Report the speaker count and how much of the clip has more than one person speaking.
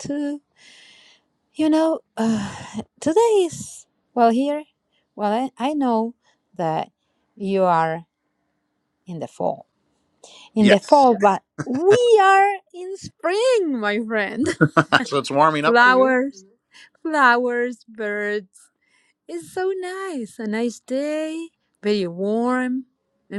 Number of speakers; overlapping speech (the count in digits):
2, about 3%